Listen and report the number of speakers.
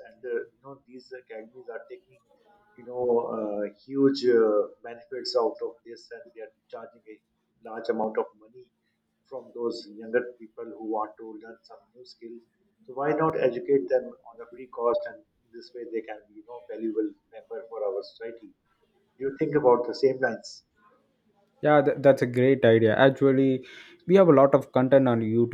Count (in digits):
2